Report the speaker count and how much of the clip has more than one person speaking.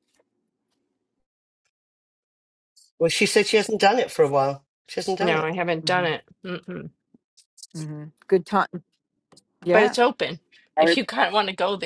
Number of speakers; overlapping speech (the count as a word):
three, about 6%